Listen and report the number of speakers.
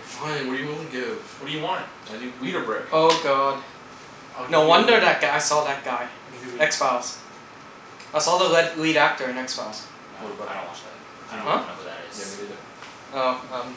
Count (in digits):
4